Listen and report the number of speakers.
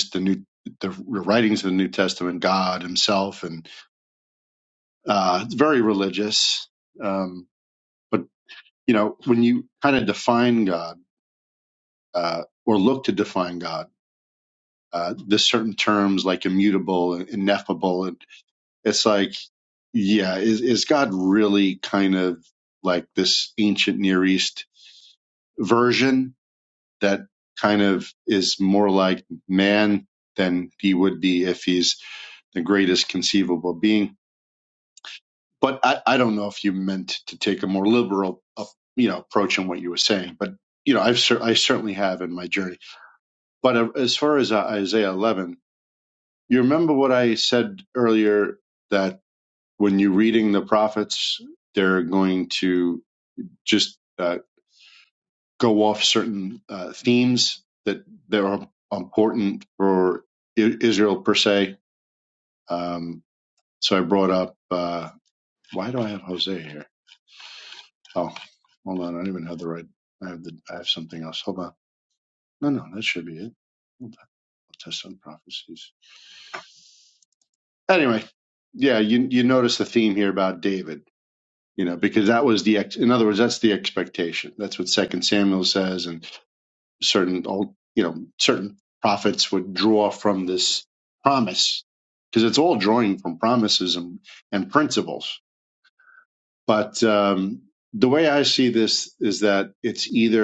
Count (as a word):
one